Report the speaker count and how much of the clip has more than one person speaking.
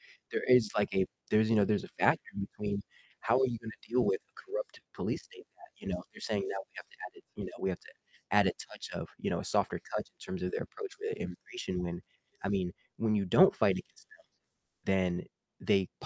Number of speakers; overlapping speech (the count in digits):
1, no overlap